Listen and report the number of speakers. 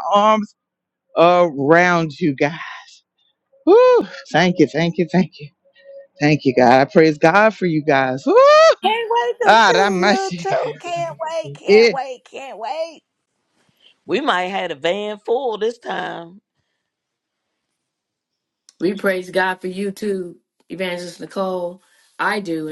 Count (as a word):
three